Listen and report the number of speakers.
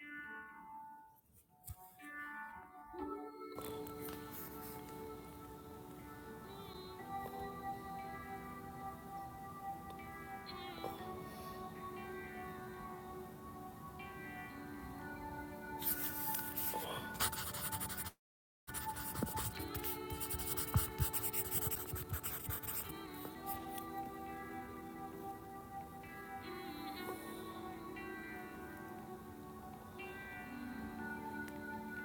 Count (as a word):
zero